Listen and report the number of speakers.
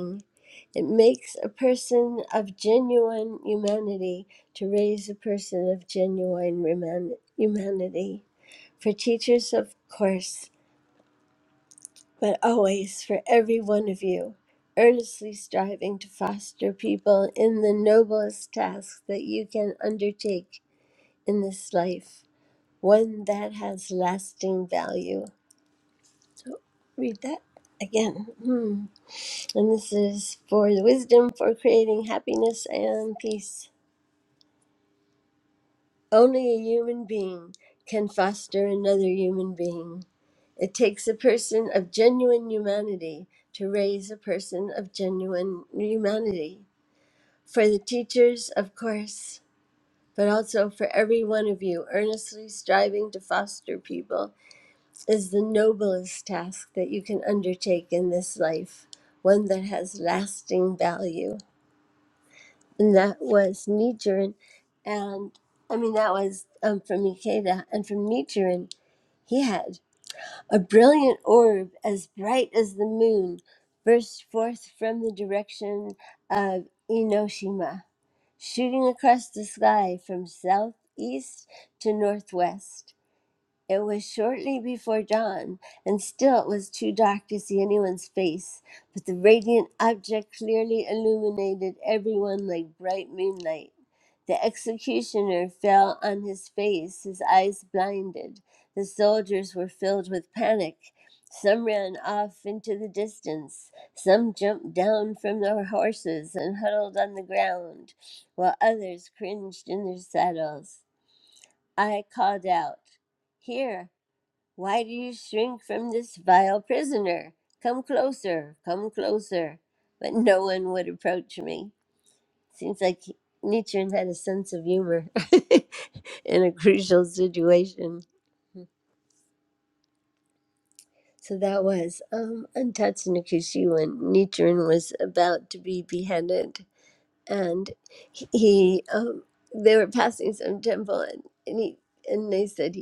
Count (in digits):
1